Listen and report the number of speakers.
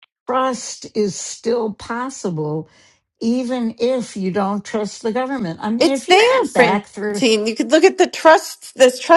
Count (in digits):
2